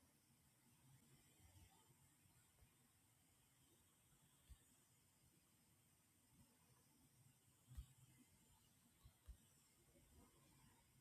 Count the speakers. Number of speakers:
zero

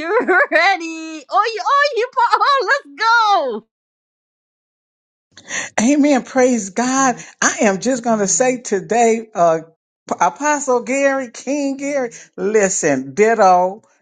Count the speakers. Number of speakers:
two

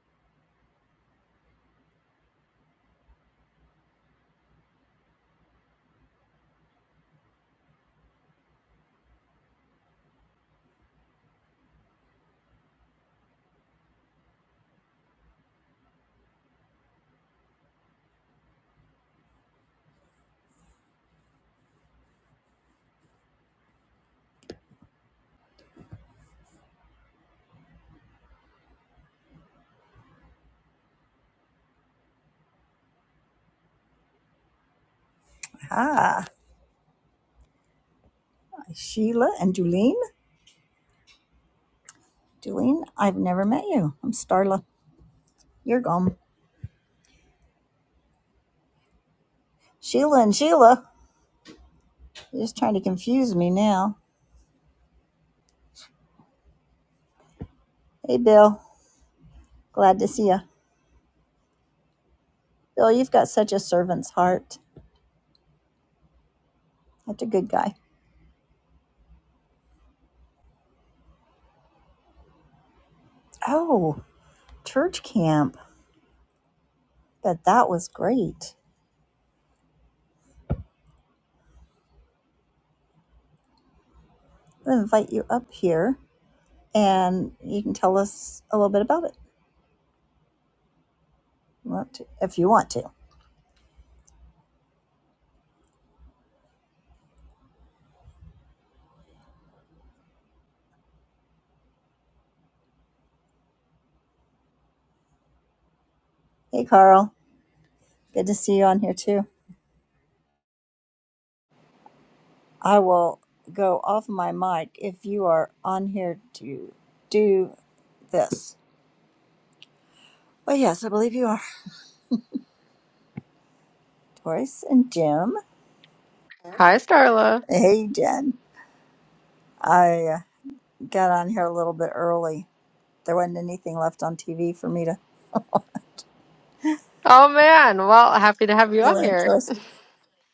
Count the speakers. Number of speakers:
two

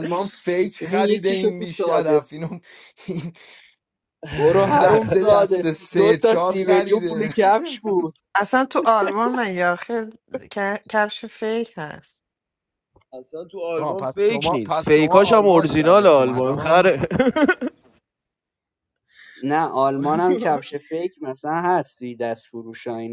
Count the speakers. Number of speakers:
four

